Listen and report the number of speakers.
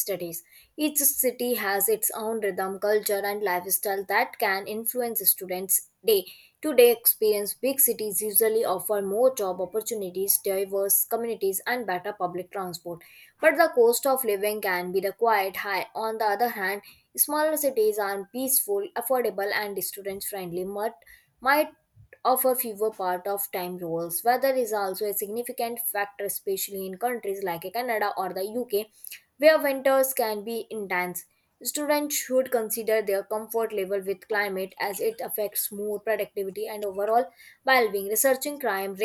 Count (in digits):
1